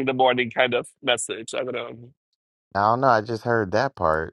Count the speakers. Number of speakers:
2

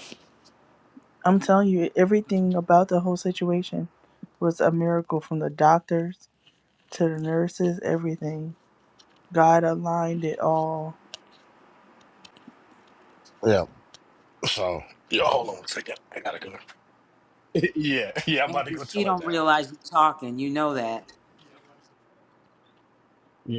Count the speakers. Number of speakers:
3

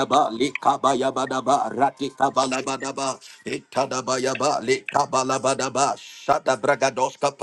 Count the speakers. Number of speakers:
1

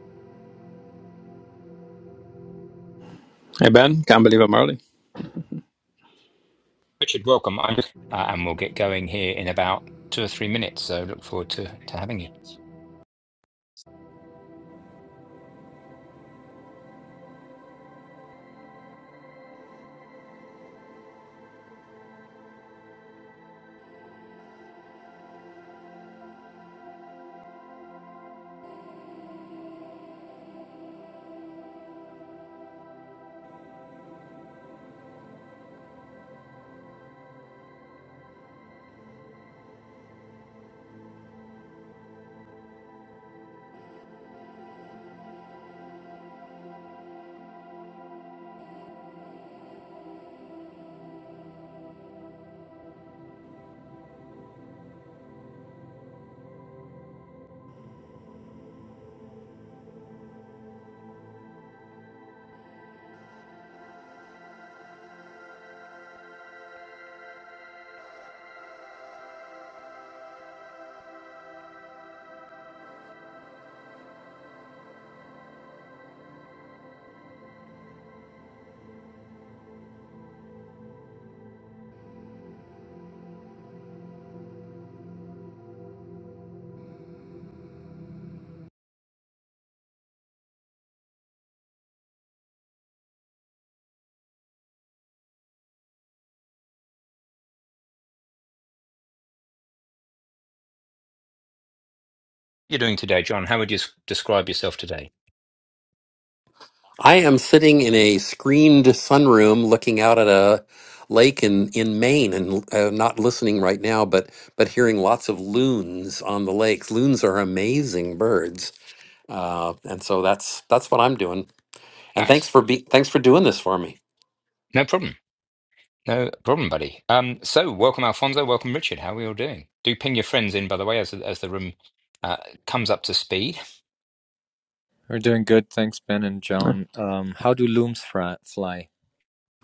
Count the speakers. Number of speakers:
4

